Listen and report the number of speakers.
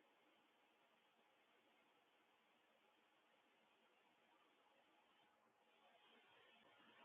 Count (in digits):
0